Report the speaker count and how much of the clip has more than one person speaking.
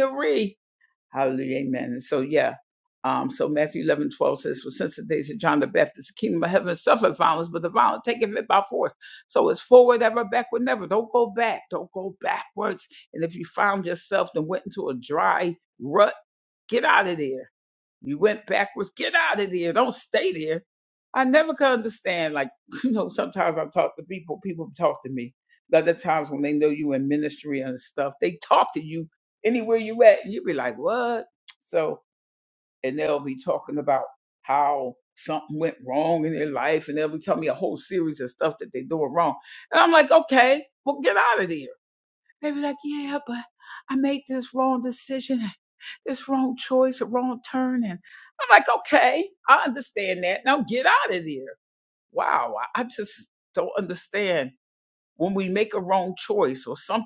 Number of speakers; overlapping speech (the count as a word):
one, no overlap